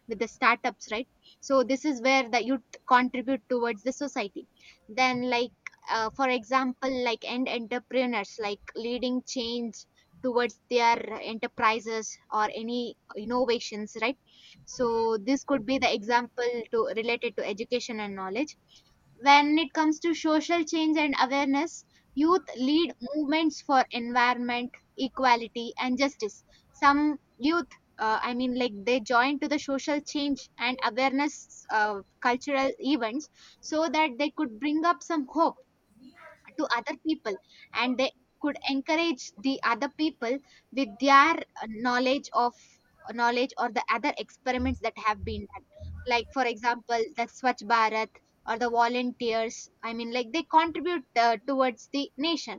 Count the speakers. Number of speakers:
1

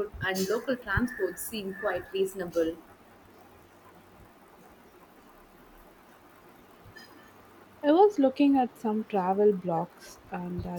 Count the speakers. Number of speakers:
2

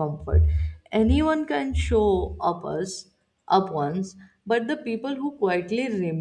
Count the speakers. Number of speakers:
1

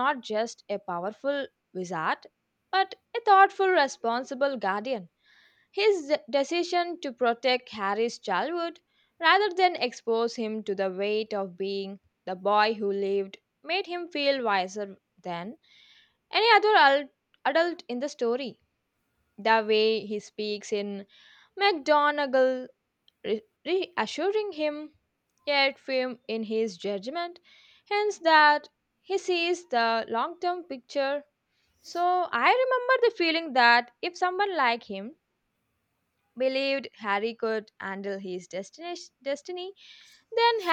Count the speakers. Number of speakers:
1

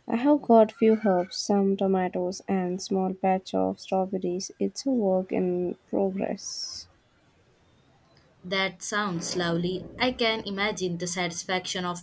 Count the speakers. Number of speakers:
2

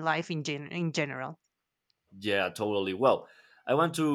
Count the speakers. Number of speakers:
2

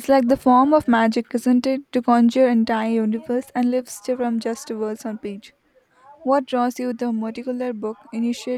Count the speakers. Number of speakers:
1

